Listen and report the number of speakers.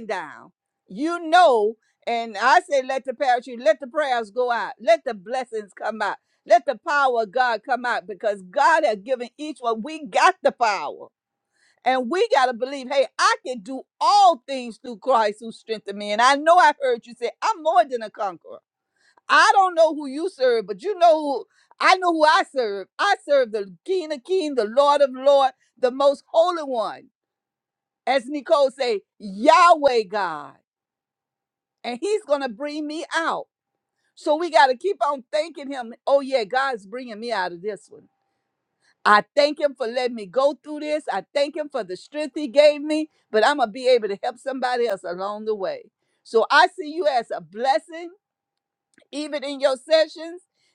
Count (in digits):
1